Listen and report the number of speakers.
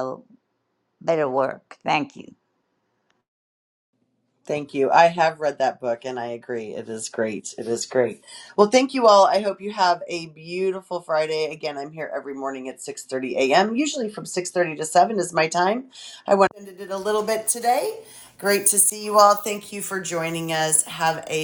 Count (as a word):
two